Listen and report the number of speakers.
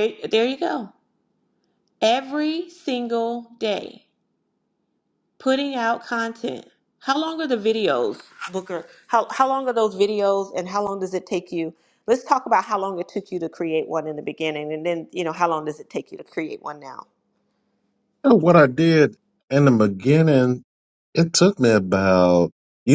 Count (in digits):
2